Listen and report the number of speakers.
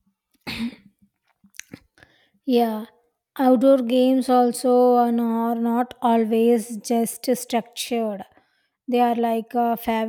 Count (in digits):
1